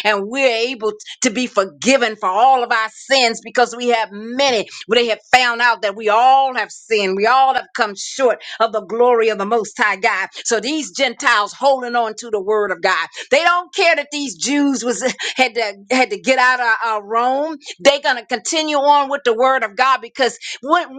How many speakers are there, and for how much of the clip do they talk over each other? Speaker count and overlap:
1, no overlap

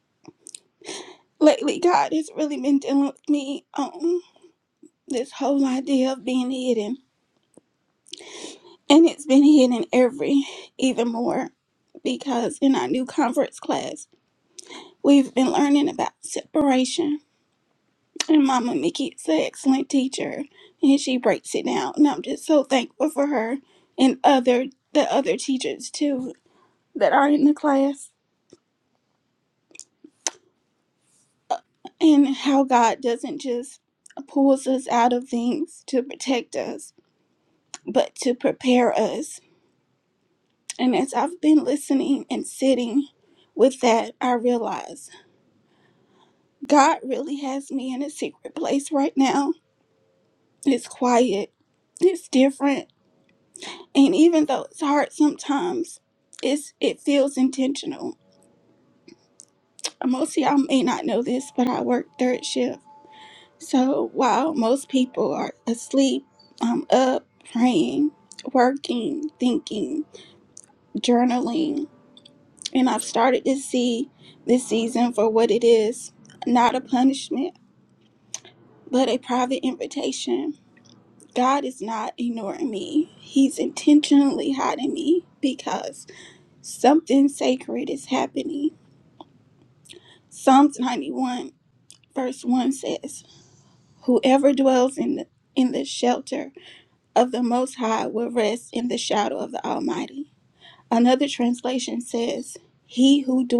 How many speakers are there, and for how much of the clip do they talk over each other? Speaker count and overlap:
1, no overlap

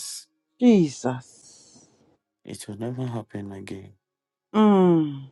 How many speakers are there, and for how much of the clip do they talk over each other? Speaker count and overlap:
2, no overlap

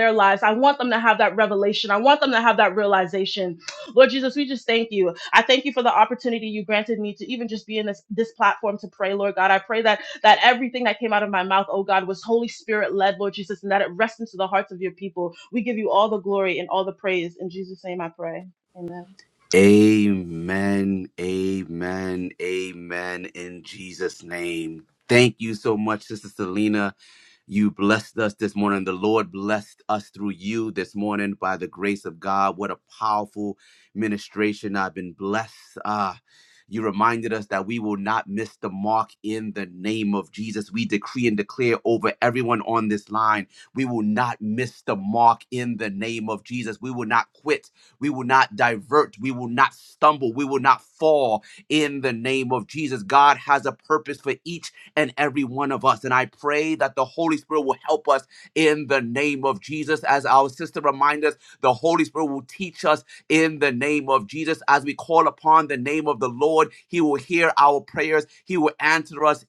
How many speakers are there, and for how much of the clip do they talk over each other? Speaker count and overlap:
2, no overlap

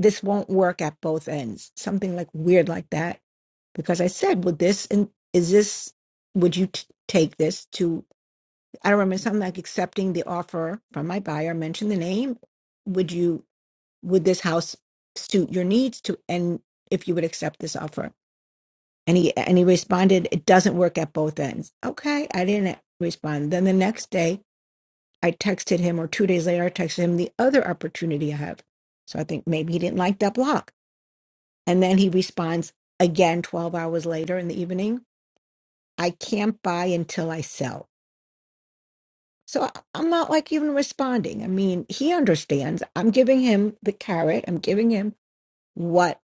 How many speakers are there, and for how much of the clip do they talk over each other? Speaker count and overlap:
1, no overlap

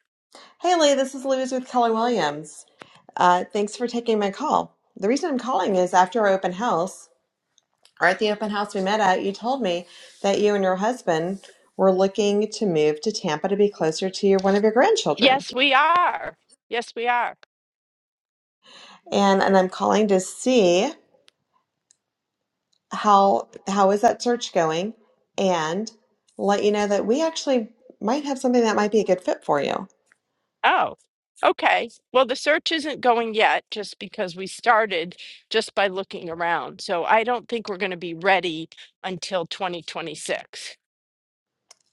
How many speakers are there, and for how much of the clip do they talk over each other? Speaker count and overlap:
2, about 1%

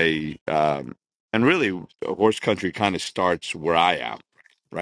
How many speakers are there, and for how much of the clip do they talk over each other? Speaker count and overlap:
1, no overlap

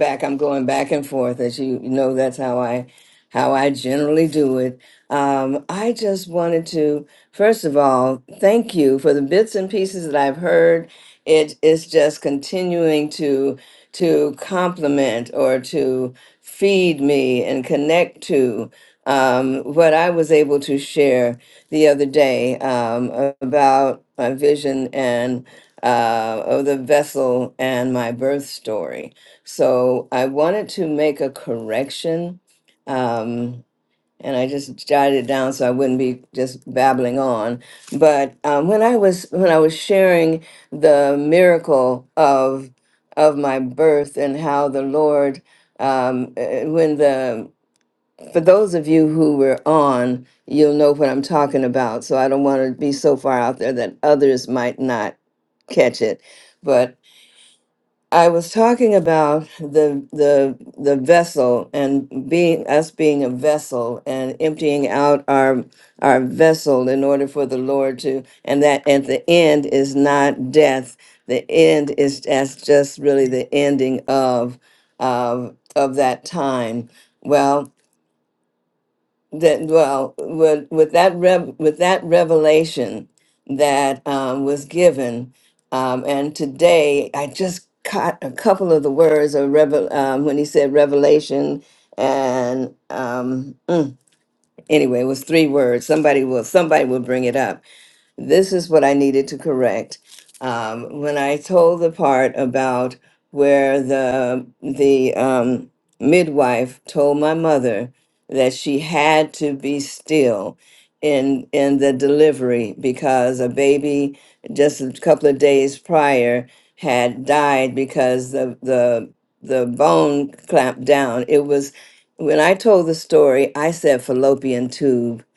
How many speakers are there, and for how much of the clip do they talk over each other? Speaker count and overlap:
1, no overlap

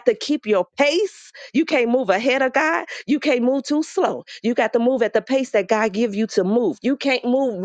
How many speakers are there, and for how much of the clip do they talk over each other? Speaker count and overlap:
1, no overlap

